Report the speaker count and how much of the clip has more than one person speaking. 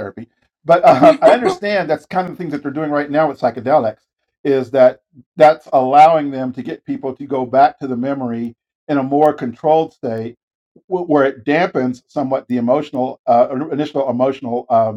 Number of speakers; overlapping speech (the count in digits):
1, no overlap